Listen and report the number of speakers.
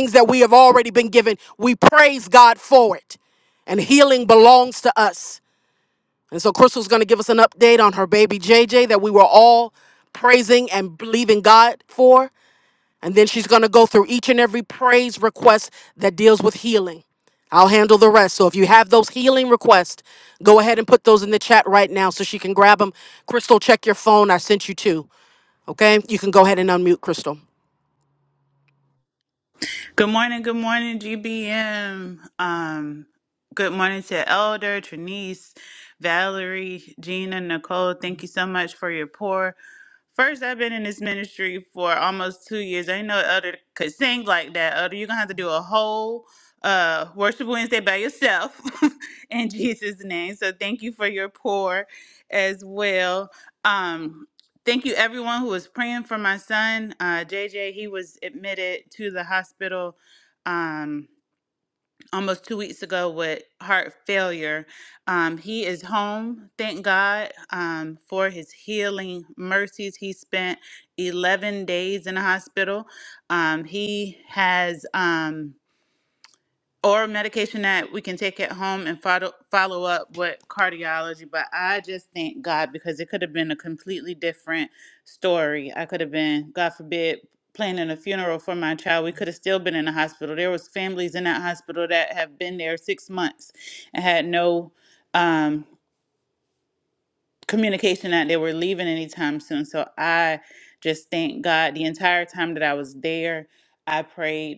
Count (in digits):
2